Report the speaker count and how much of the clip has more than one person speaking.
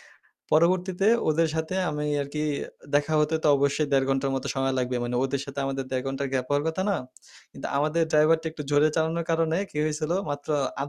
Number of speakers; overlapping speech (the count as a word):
one, no overlap